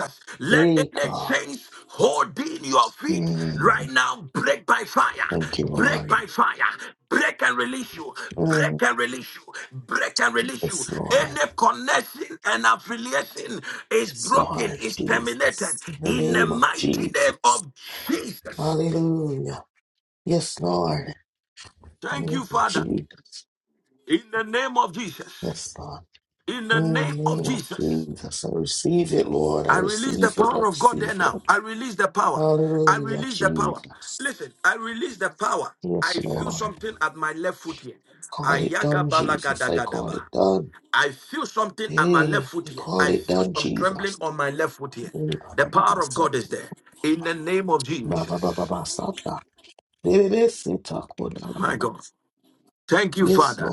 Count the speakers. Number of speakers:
2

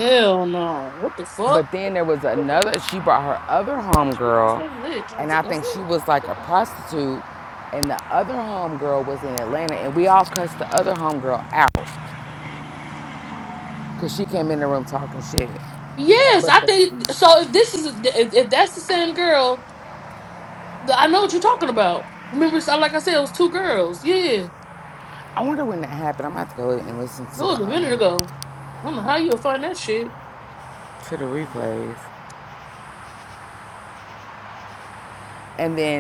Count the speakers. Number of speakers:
2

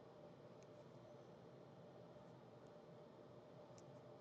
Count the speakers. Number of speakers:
0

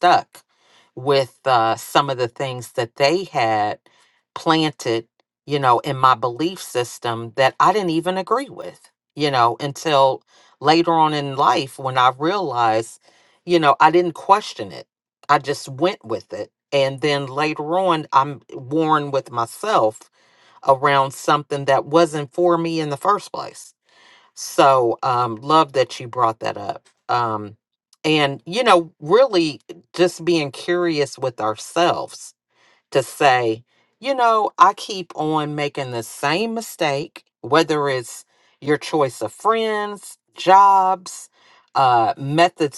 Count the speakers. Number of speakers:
1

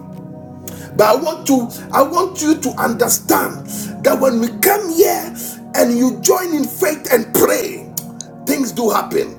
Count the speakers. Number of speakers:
1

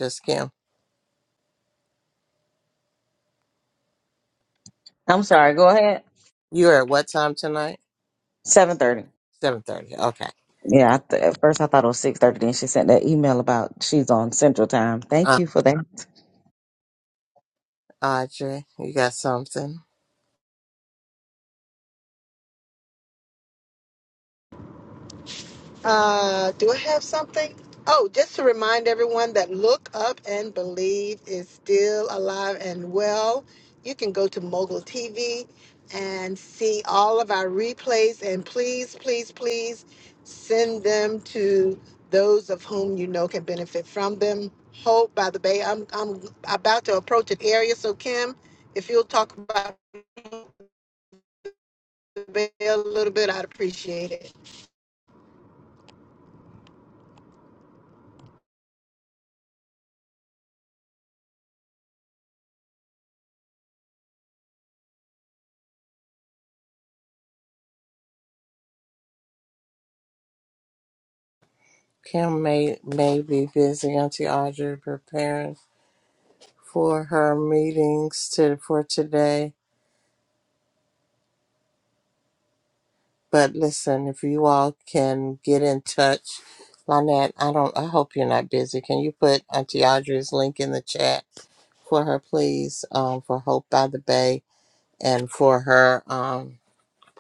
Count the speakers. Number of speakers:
3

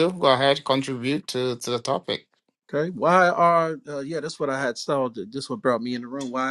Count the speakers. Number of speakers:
2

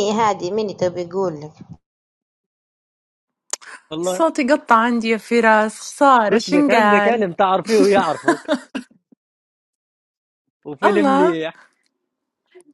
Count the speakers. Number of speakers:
3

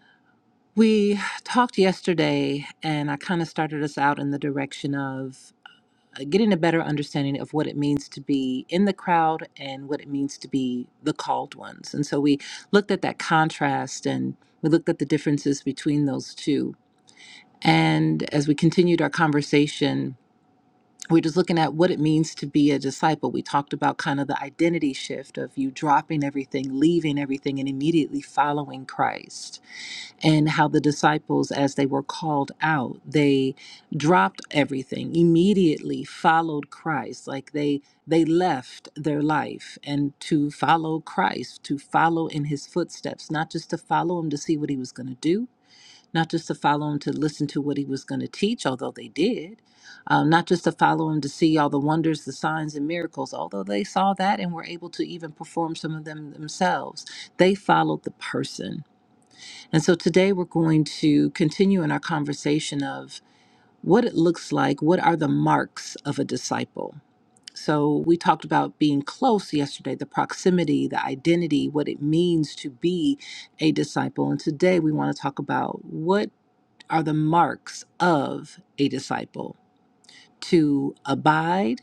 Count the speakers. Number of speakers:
1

